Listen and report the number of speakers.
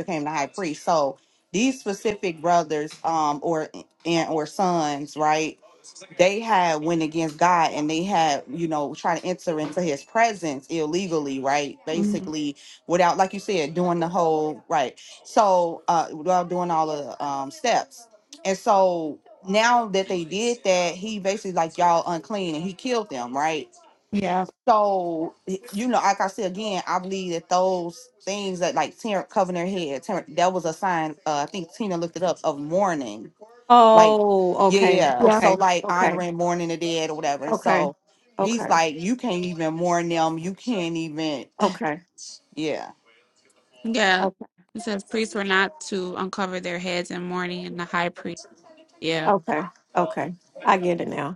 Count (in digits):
3